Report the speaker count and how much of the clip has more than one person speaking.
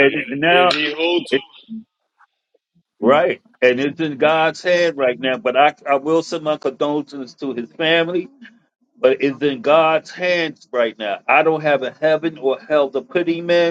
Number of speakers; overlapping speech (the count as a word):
two, about 6%